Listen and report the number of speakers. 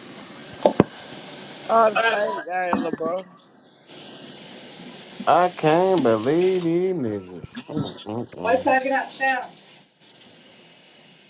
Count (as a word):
three